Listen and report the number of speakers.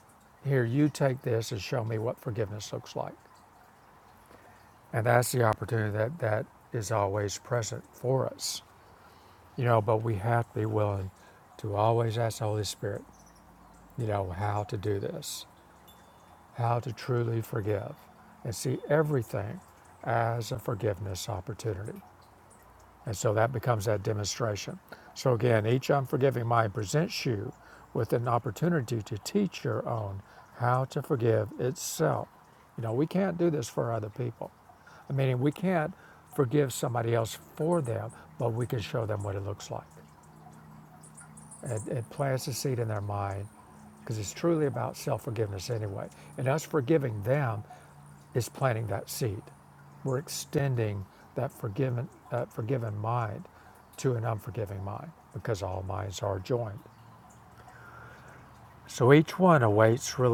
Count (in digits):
1